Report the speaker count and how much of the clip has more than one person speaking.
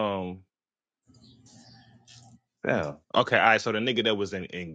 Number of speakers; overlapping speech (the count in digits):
1, no overlap